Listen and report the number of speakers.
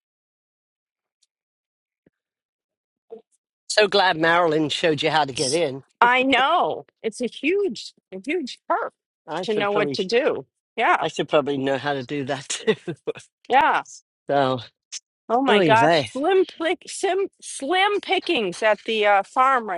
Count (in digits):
2